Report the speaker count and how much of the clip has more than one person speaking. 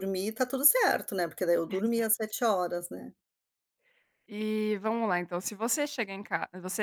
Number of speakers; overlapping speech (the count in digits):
2, about 5%